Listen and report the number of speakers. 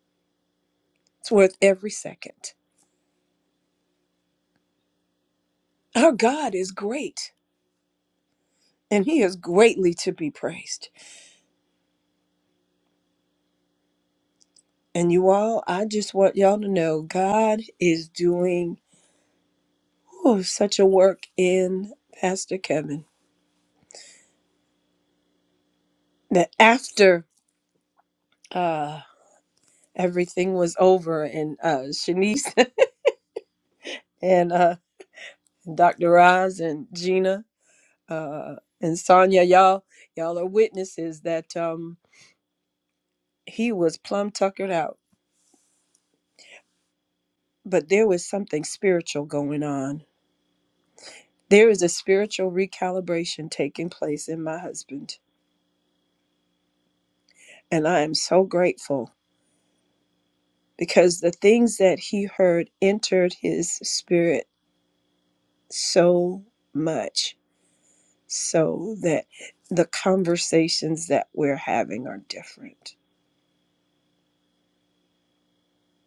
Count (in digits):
1